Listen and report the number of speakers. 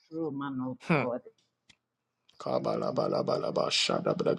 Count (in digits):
2